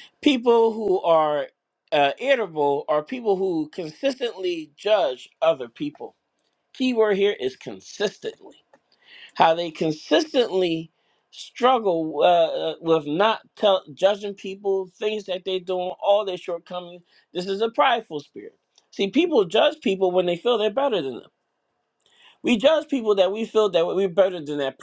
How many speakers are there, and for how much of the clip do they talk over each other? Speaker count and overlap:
one, no overlap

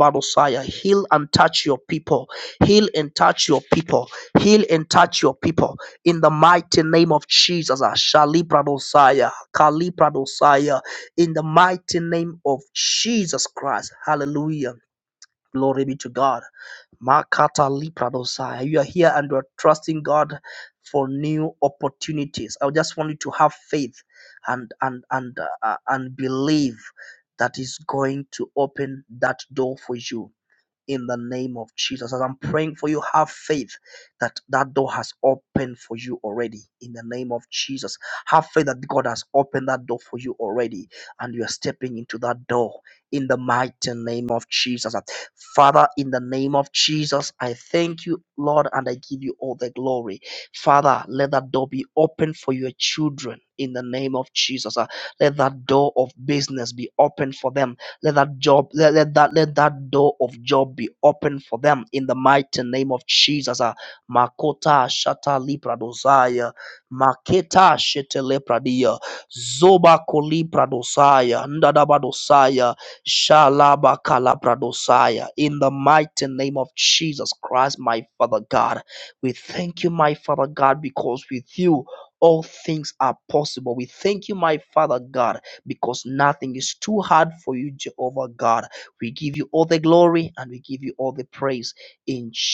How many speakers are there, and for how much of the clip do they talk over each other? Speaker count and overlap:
one, no overlap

